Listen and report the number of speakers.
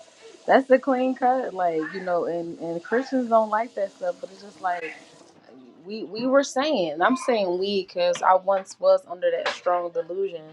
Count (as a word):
one